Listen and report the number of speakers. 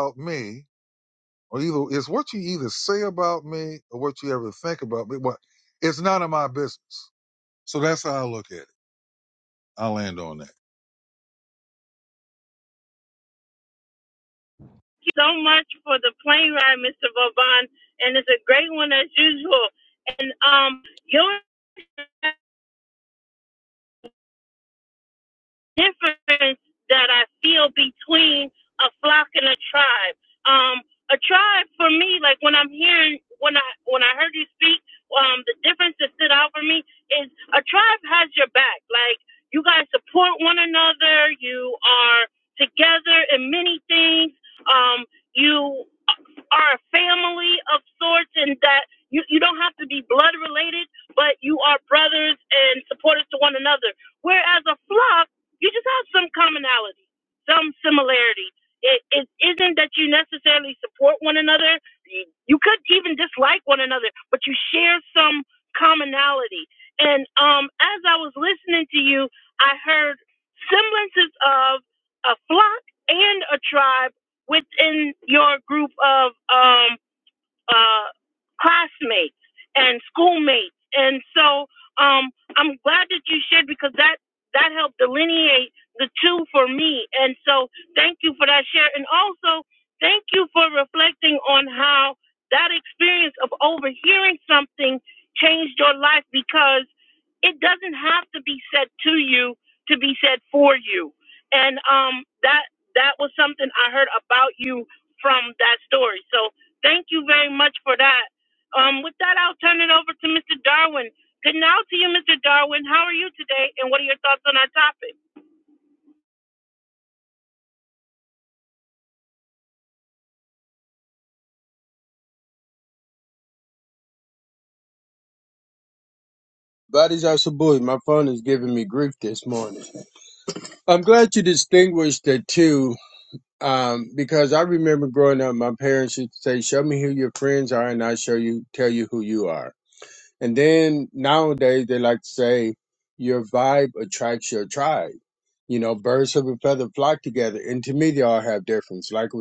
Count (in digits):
3